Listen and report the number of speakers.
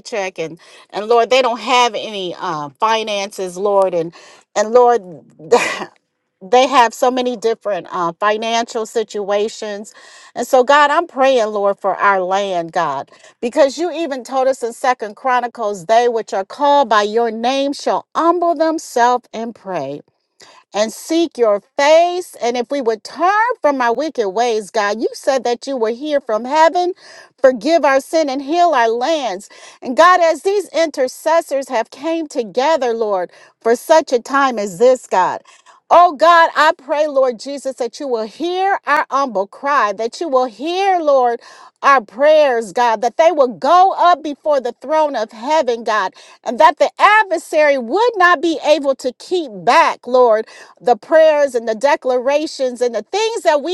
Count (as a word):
one